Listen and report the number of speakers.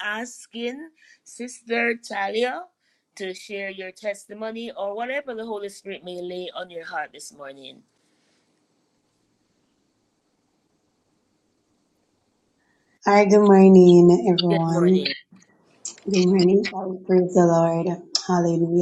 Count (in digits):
2